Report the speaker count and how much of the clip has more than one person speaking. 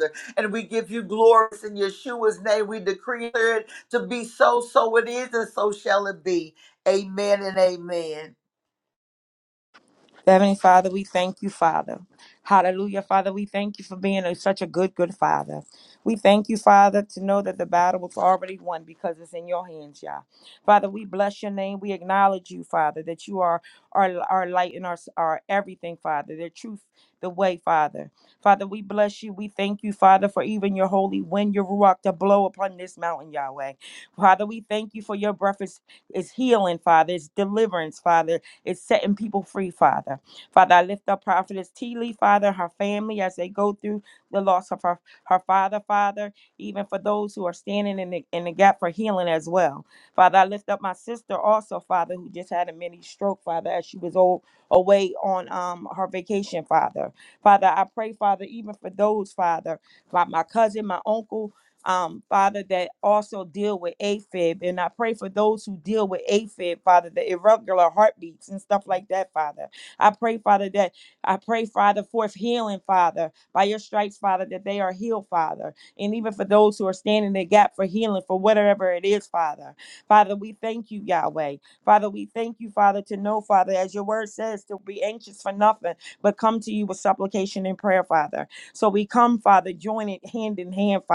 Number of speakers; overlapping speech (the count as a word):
two, no overlap